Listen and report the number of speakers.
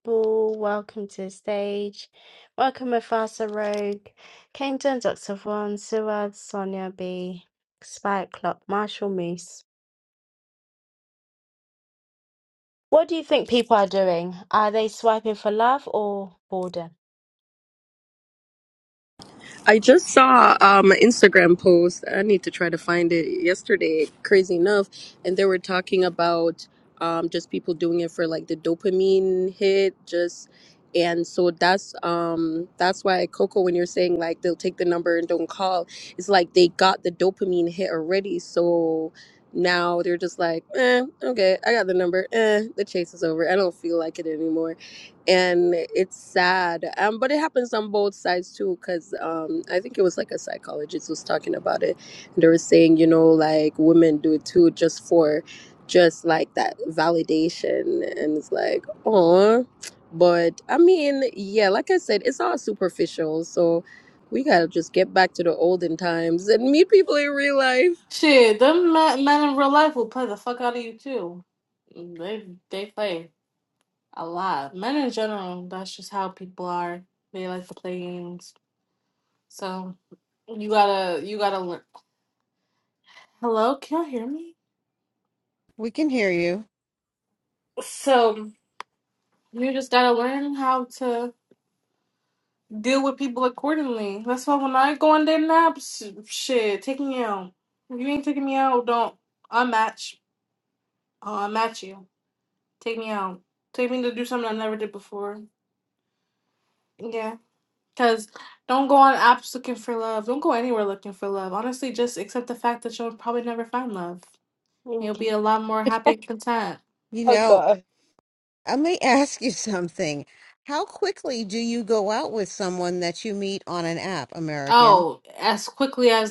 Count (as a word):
four